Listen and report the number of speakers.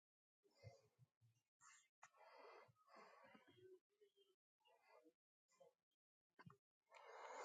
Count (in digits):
0